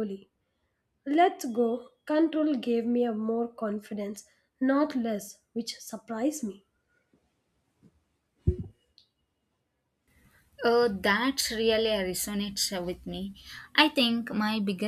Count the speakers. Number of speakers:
two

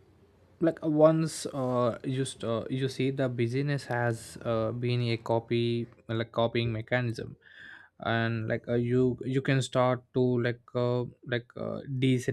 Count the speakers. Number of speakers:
one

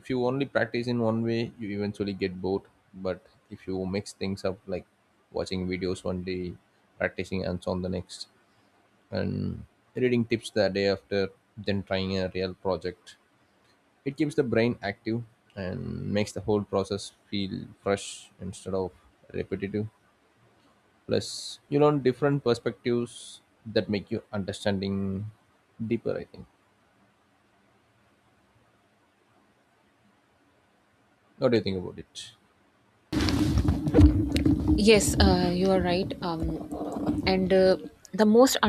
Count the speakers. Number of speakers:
two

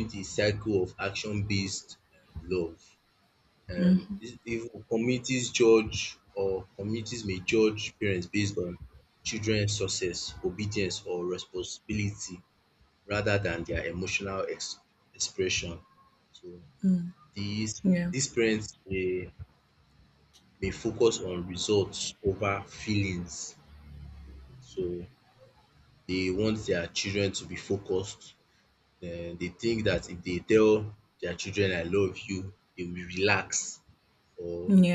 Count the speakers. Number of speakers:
two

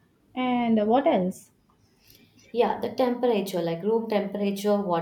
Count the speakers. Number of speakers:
two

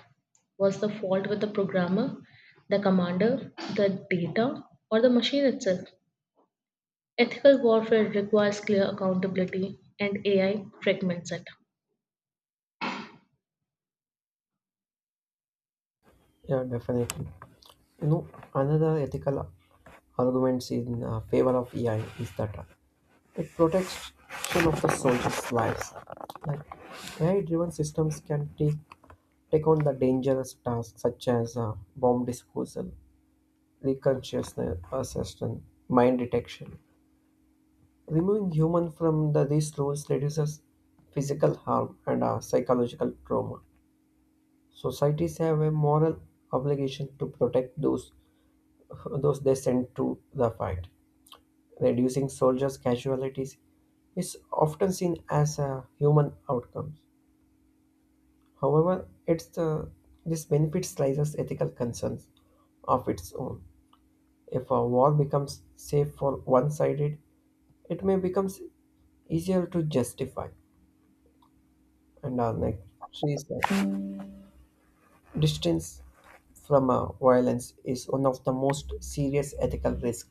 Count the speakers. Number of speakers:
two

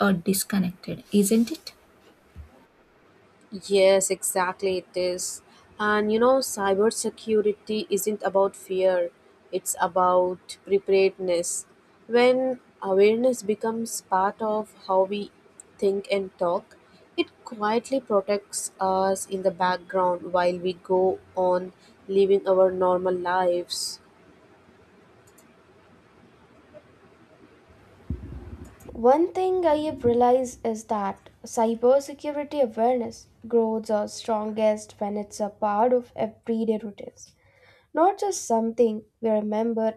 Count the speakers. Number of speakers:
three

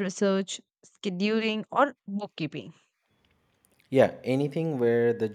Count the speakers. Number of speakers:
two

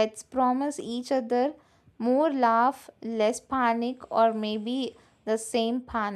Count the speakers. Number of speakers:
one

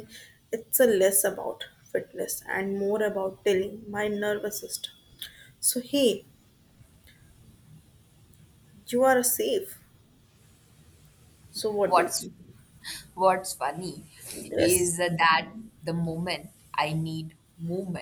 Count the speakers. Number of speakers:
two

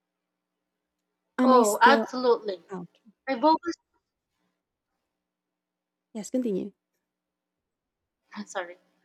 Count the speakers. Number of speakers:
two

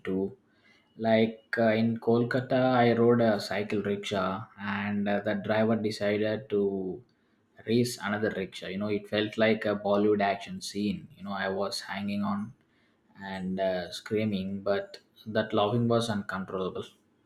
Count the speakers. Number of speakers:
one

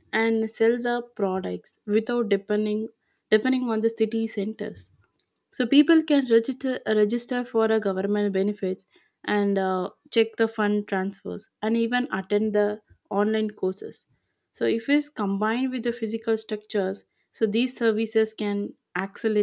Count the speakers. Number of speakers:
one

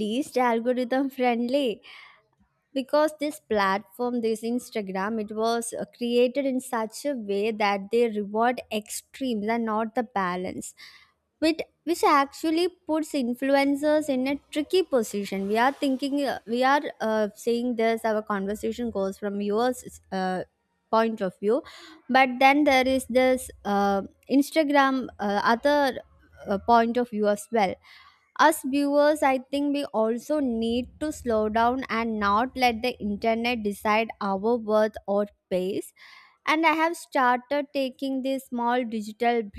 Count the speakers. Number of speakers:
one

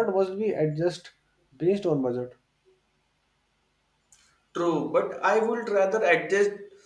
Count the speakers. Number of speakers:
two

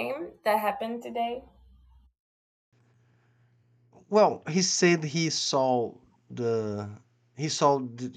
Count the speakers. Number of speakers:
two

